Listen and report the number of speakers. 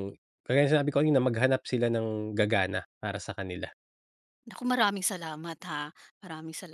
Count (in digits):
2